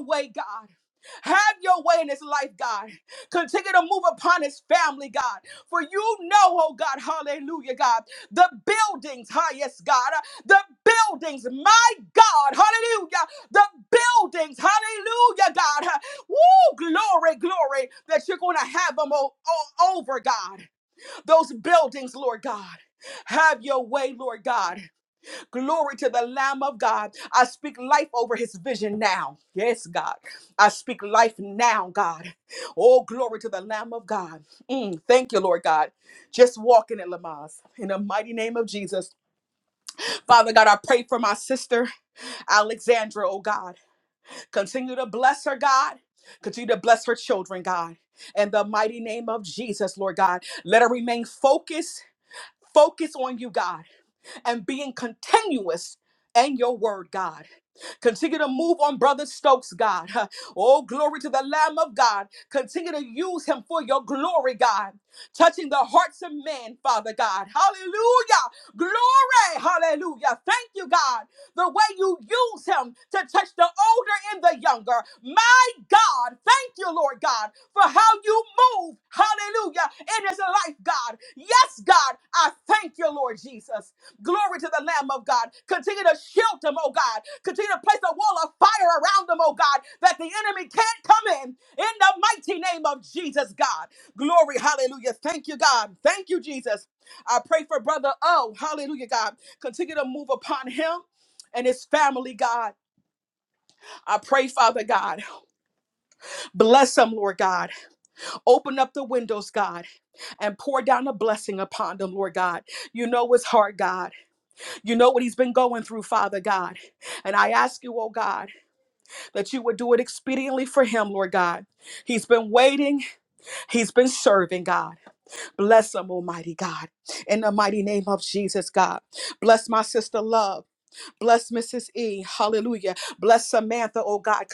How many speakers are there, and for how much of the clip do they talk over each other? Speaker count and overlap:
one, no overlap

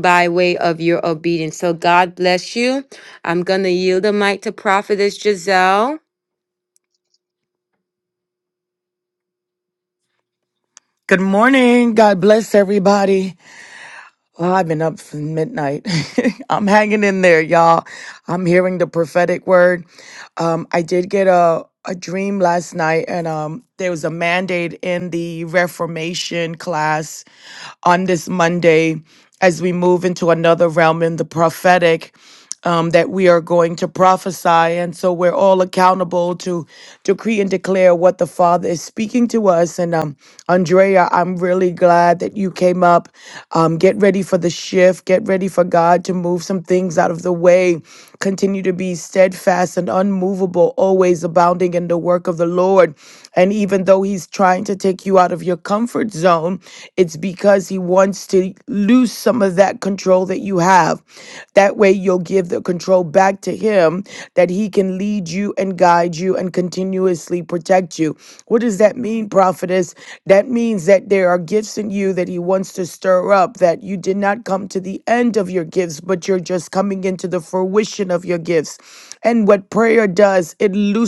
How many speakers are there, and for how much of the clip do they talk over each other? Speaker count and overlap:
two, no overlap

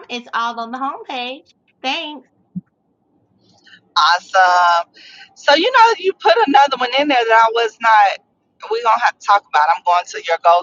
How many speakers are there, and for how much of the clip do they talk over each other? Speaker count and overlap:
two, no overlap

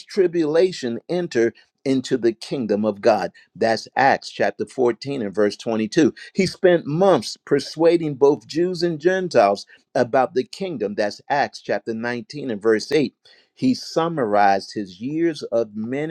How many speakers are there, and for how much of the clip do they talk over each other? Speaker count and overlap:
one, no overlap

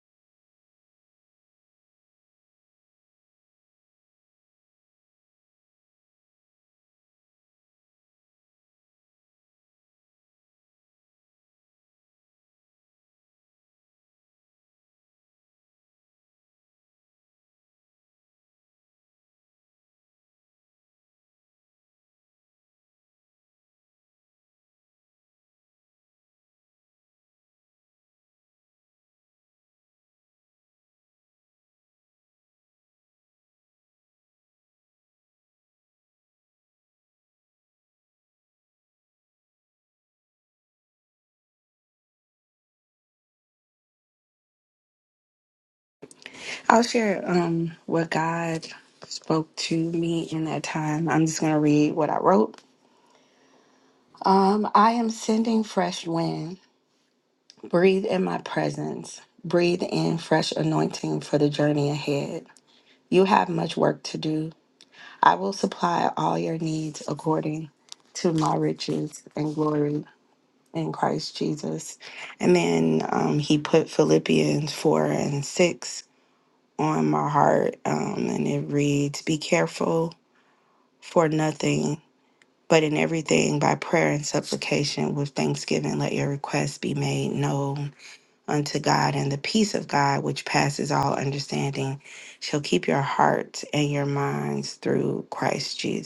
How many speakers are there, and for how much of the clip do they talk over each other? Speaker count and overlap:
one, no overlap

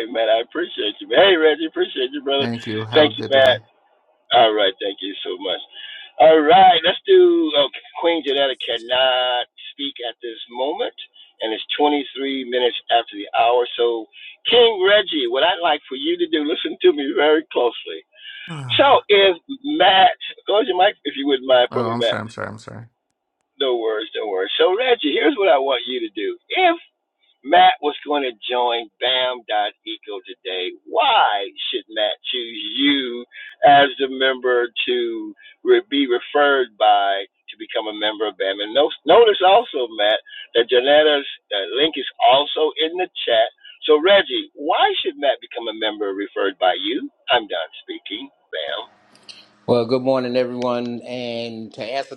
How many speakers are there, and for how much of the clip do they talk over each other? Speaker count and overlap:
three, about 2%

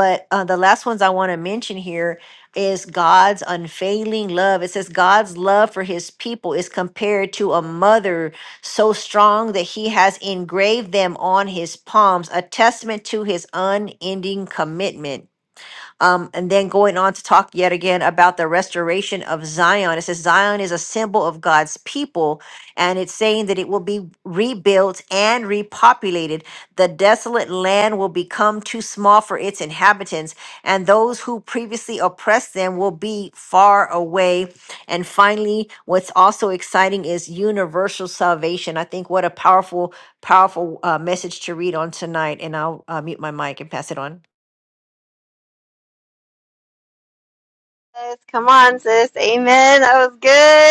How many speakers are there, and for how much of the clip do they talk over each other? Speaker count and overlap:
two, no overlap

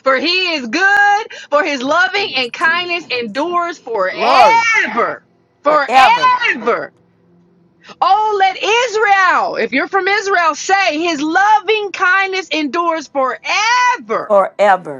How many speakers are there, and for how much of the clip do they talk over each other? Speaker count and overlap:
two, about 7%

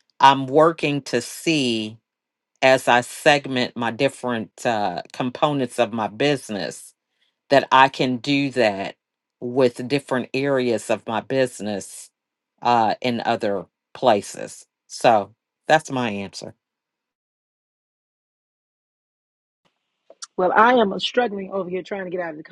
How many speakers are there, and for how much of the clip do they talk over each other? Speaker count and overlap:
two, no overlap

